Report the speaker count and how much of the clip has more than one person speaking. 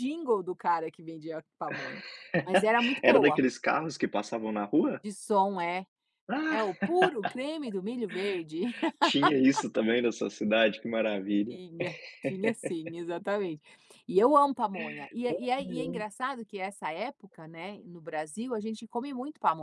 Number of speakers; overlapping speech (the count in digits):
2, about 5%